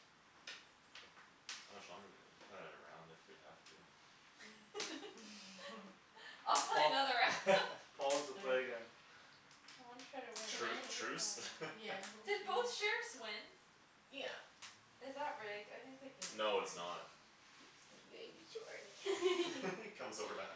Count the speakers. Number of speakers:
four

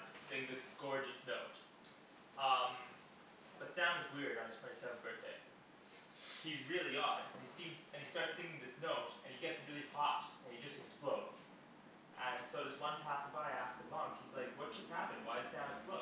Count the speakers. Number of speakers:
one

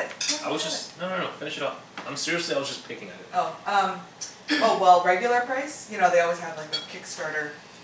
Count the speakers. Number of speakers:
two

